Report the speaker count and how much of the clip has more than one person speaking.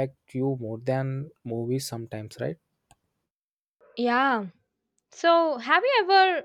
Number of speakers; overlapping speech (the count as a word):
two, no overlap